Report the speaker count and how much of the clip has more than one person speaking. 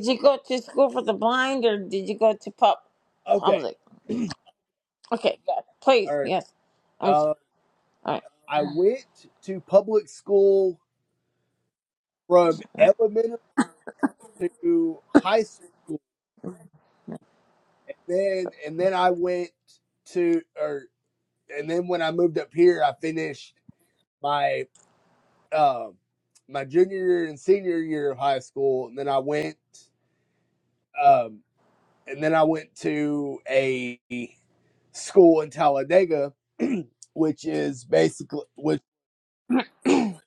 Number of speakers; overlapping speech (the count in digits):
2, about 2%